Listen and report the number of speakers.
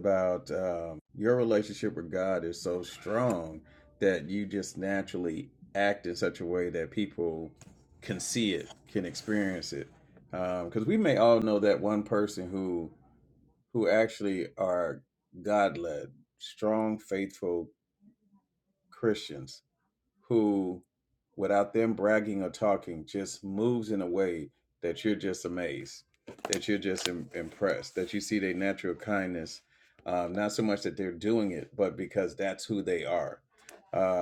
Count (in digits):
1